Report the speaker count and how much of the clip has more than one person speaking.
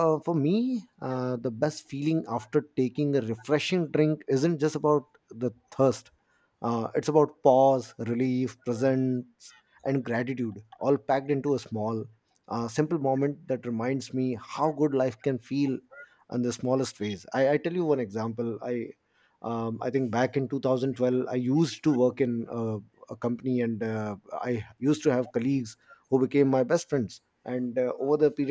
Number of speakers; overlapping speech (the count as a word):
one, no overlap